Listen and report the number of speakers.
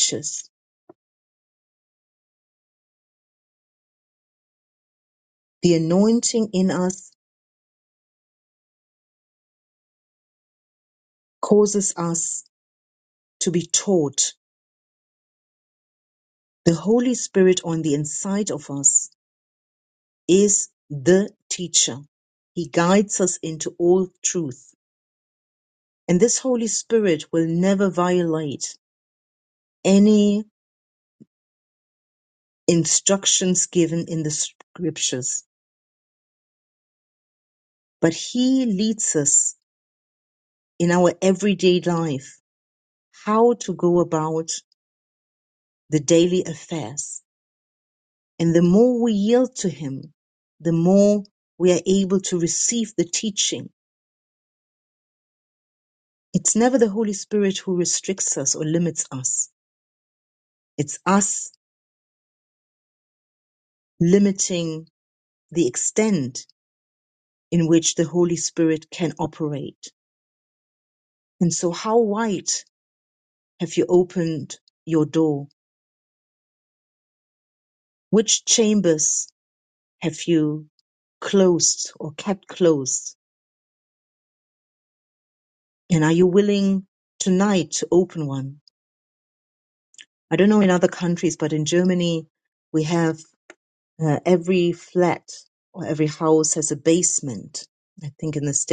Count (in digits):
1